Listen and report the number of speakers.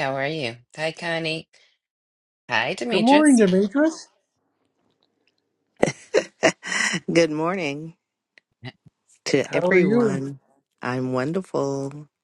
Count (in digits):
3